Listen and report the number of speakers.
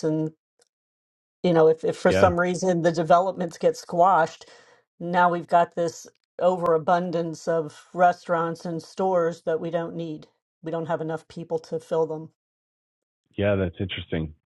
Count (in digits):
2